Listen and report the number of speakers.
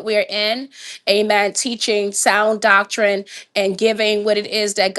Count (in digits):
1